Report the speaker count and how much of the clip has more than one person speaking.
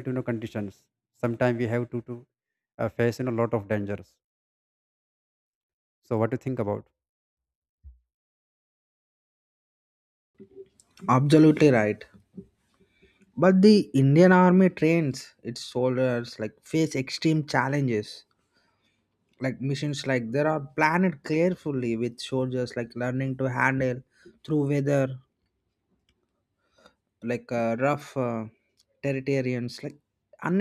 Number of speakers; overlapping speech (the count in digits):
2, no overlap